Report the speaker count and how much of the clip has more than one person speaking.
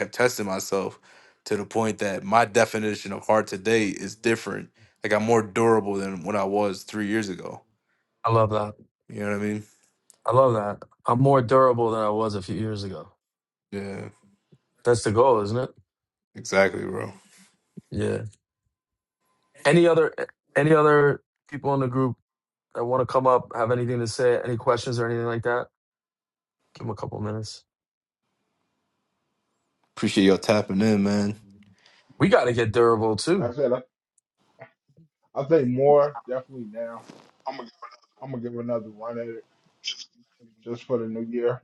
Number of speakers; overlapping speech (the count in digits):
3, under 1%